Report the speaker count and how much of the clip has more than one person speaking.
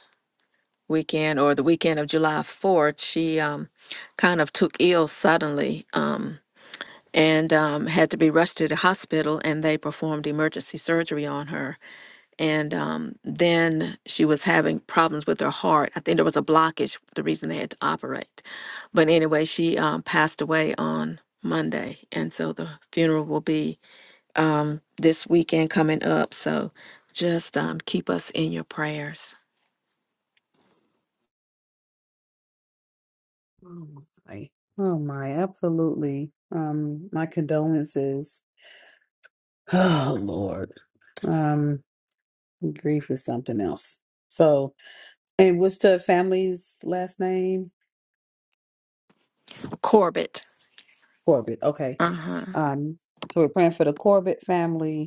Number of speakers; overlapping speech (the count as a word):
two, no overlap